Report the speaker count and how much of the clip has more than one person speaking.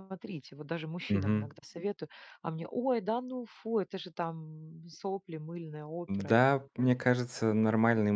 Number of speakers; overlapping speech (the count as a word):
two, about 9%